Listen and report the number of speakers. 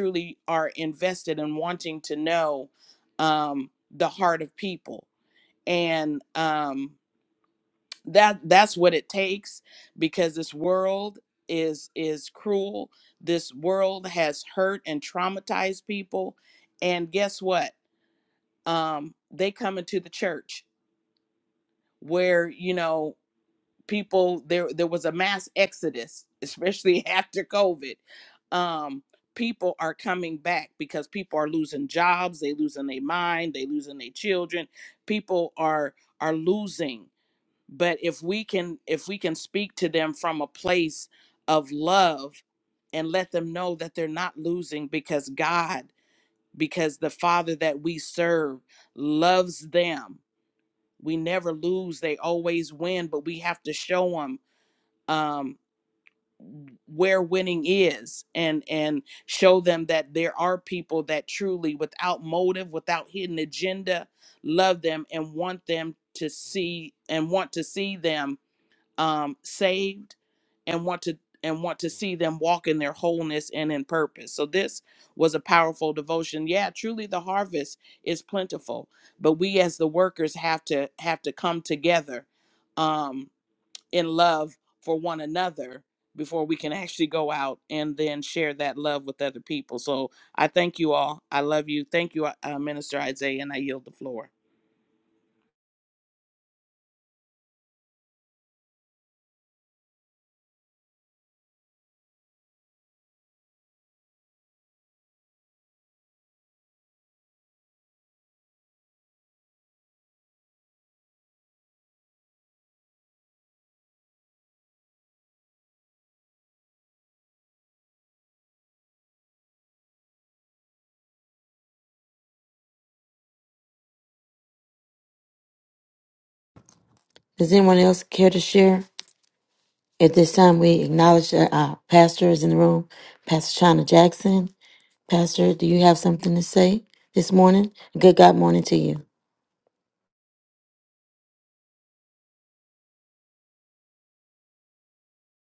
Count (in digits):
2